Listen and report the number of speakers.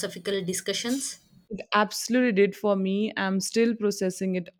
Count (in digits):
2